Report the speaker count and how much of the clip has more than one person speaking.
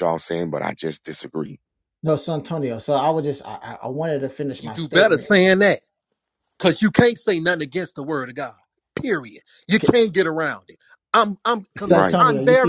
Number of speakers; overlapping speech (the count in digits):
3, about 14%